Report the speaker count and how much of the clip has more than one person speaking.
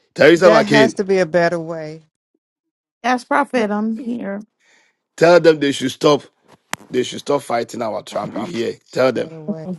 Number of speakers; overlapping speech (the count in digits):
3, about 9%